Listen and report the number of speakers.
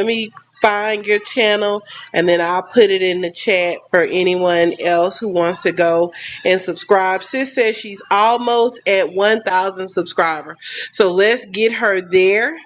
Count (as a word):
one